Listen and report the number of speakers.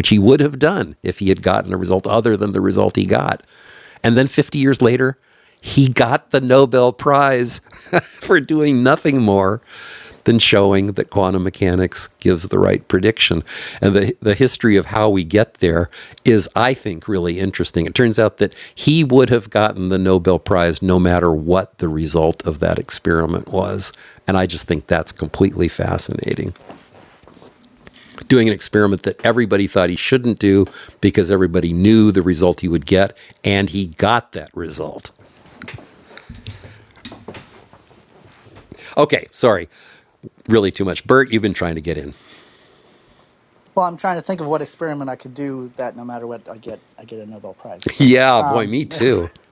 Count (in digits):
2